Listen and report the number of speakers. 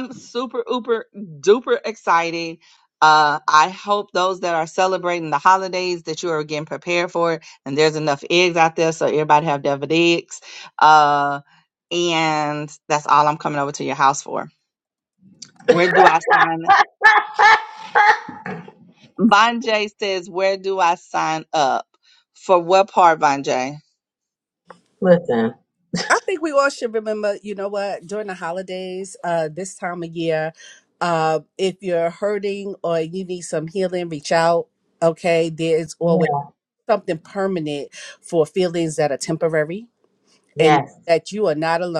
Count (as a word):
three